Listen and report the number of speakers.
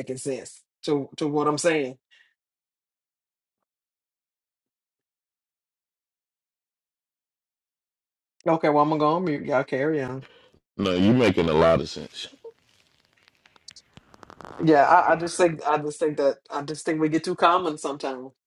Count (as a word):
two